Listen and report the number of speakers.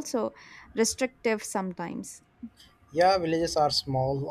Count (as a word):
two